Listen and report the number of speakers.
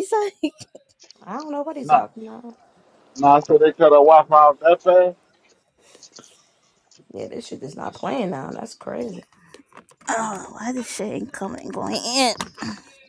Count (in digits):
3